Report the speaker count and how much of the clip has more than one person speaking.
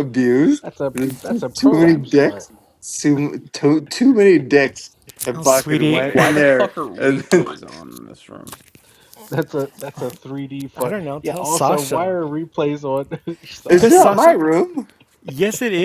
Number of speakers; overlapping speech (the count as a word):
four, about 36%